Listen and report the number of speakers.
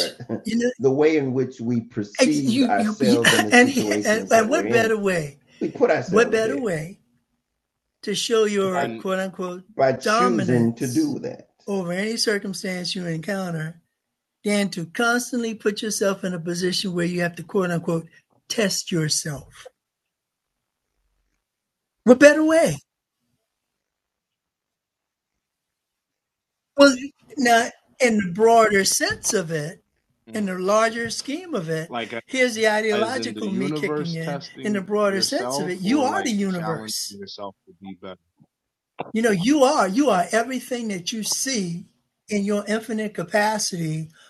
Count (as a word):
three